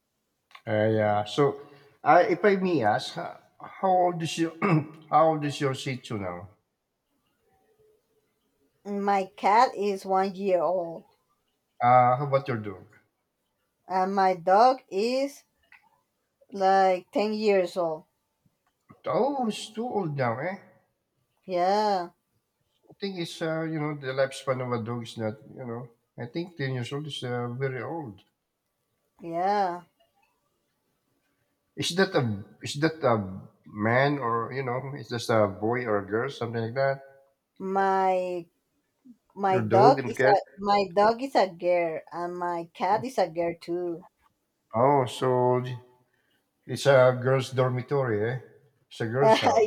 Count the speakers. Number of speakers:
two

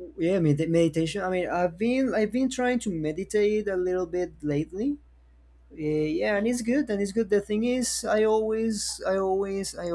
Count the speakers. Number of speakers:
one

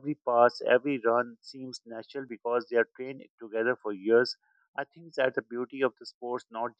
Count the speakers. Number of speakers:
one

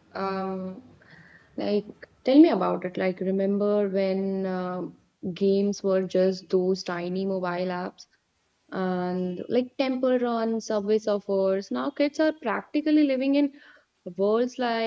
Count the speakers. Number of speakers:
one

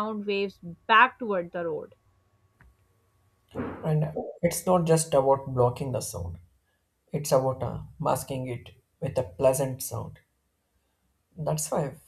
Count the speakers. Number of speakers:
two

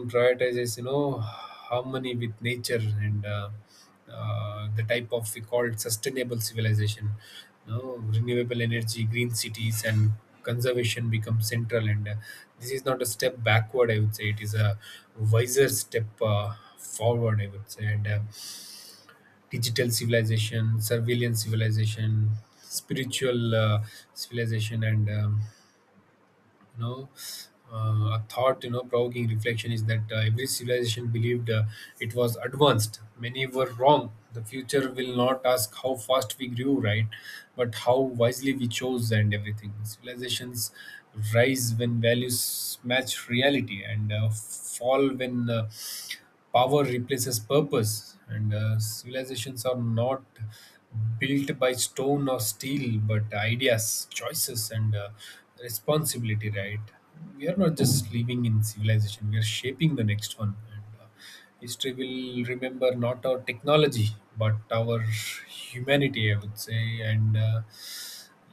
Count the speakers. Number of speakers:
one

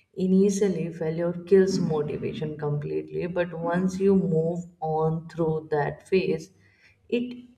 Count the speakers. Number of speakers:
one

